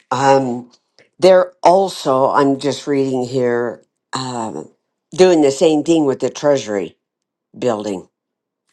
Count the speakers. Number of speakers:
1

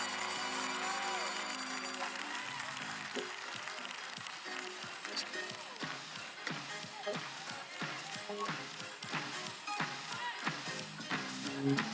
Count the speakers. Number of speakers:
0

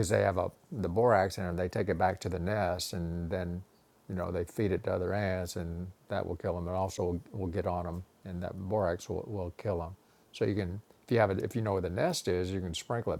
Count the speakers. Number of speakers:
1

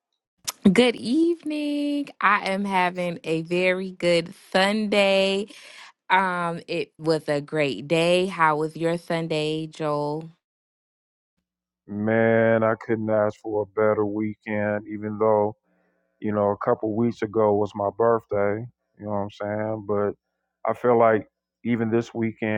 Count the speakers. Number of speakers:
2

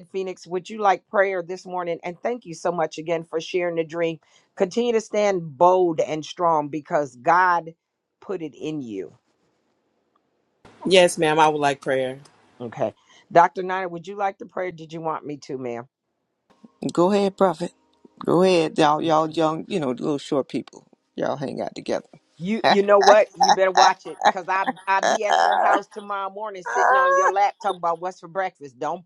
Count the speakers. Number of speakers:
3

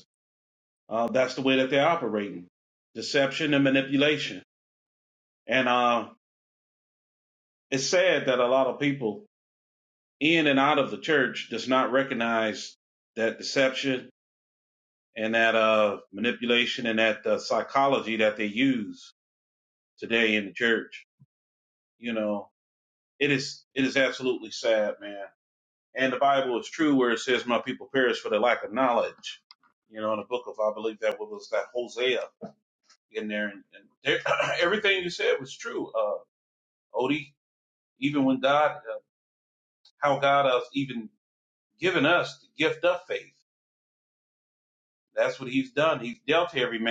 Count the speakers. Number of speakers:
1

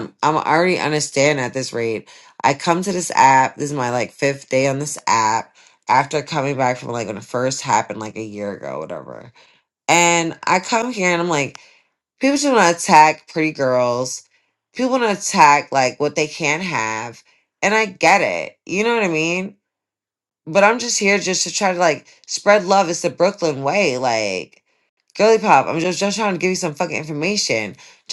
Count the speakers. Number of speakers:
1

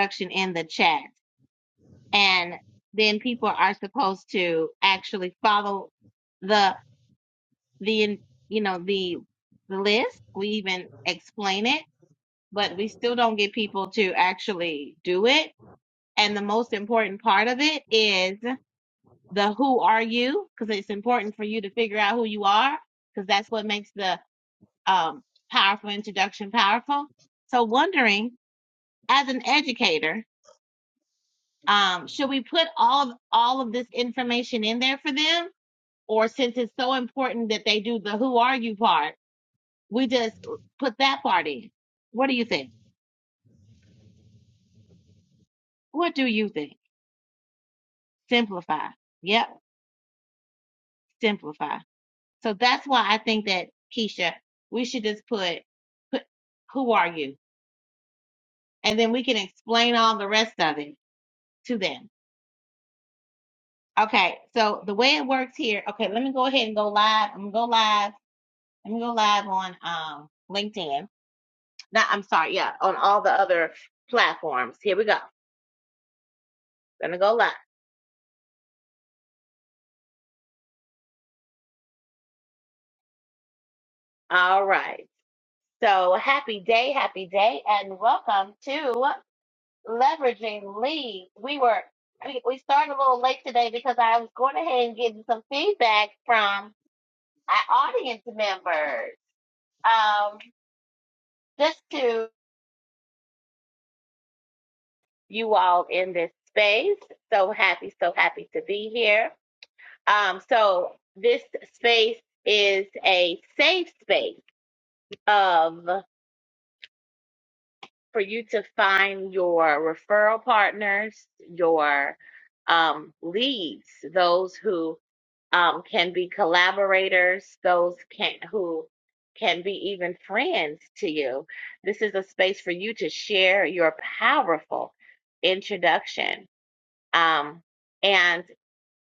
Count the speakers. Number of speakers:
1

